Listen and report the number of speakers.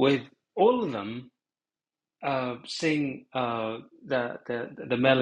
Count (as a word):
one